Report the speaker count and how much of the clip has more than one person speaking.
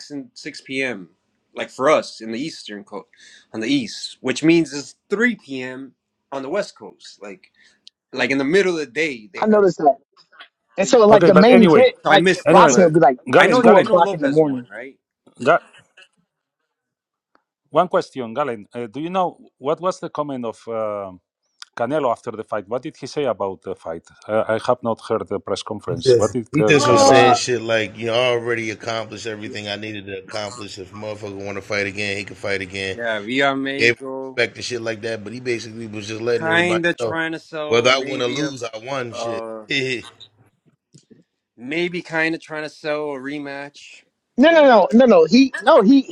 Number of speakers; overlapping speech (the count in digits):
4, about 16%